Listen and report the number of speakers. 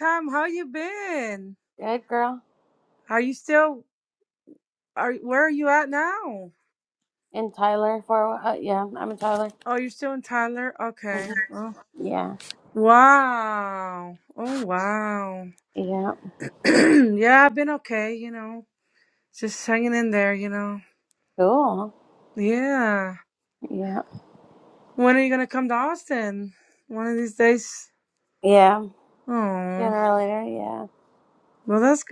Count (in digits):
2